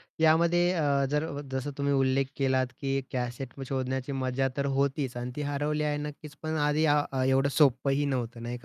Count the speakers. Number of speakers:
one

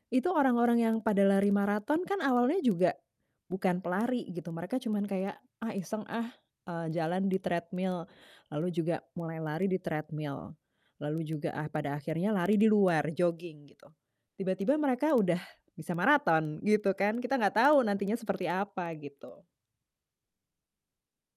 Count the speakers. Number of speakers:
one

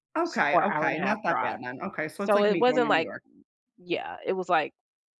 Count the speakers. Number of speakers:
two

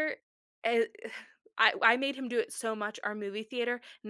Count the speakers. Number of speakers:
one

